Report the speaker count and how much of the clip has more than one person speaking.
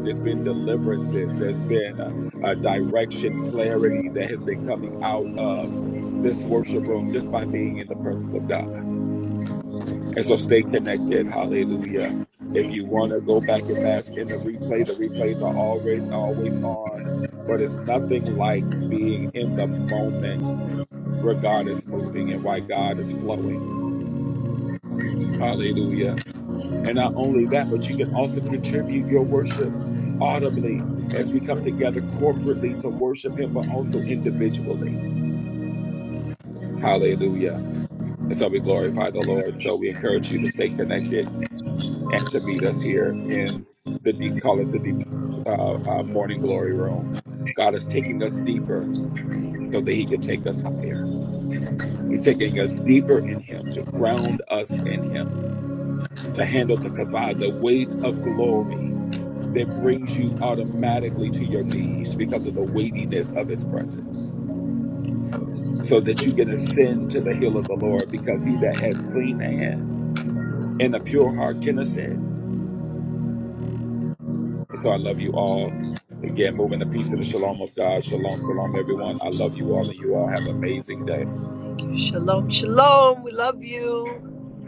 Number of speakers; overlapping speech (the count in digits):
2, no overlap